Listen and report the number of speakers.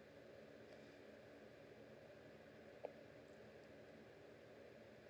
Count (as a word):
zero